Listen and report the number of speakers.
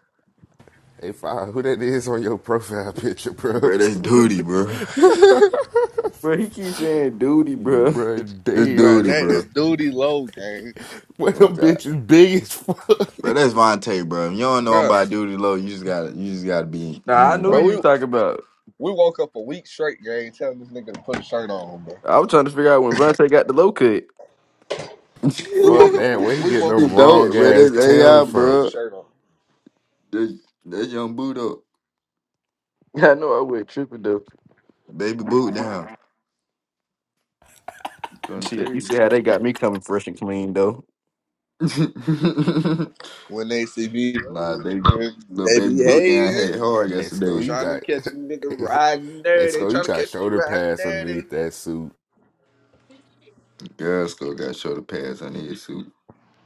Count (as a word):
four